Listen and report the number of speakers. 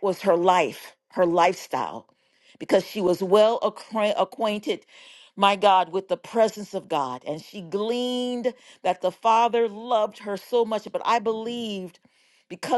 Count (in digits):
1